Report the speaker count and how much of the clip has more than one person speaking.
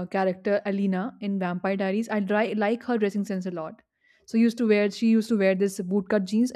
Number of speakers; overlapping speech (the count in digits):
1, no overlap